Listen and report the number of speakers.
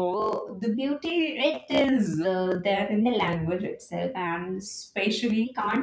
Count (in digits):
1